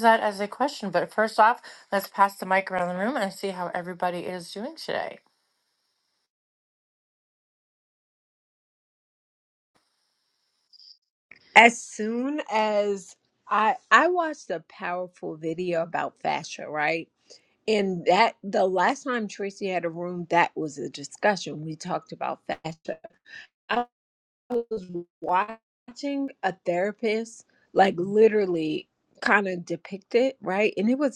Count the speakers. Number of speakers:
two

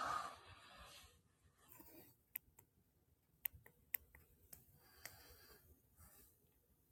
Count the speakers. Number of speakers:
zero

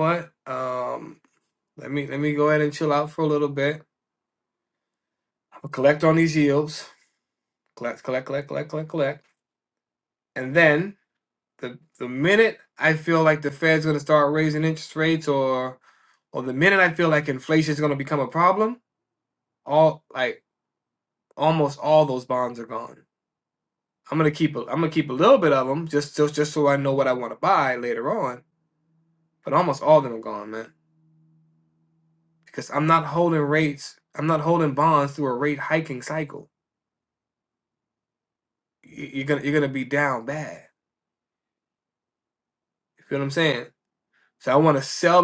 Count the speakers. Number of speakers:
one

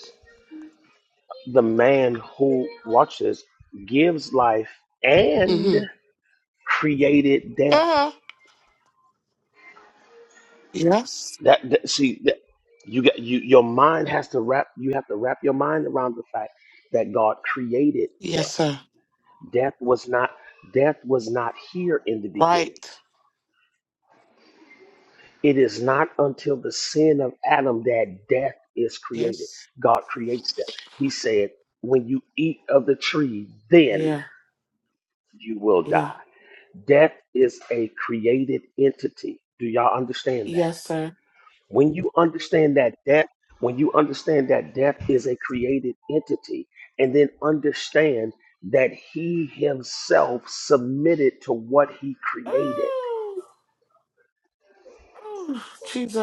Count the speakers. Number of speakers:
two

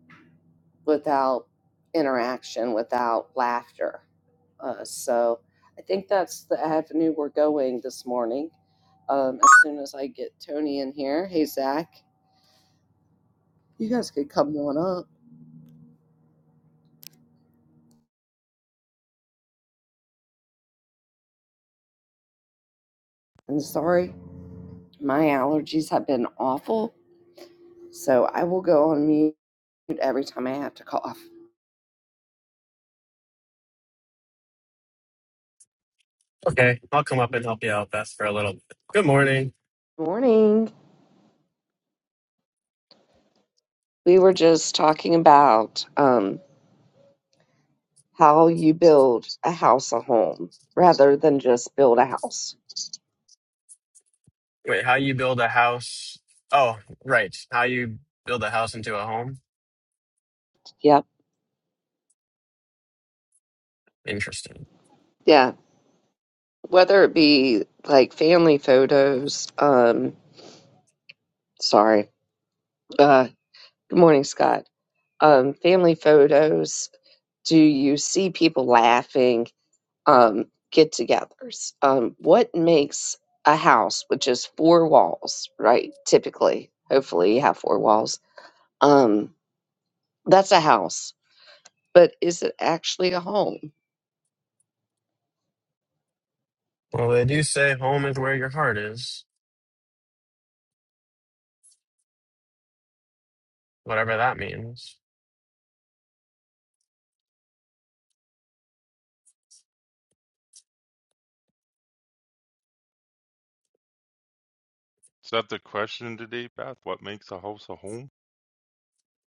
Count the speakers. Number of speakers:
three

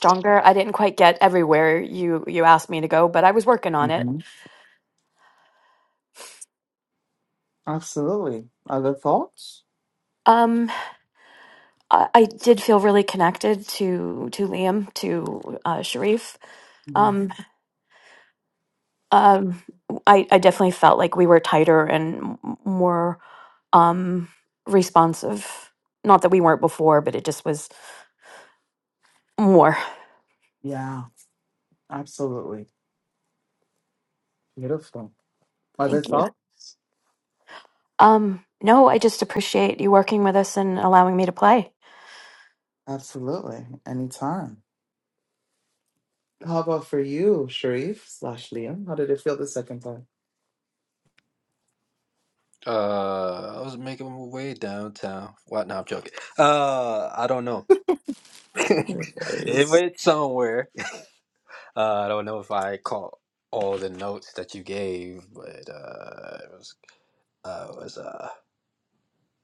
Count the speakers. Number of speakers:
three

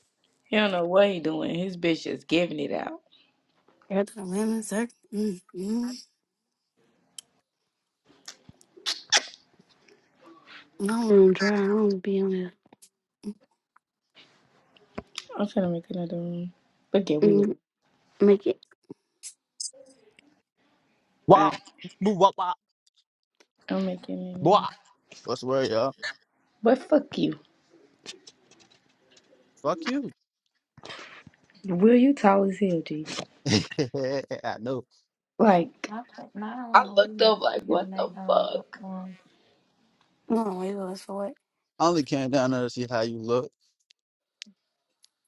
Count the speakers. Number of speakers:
three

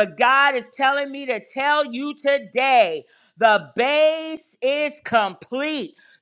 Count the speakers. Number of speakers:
one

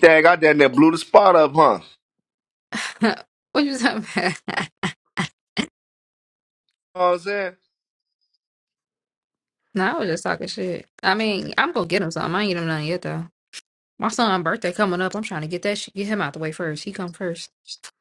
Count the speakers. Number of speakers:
two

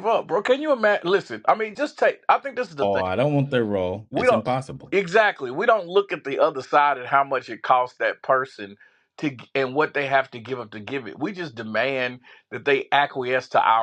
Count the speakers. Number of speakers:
two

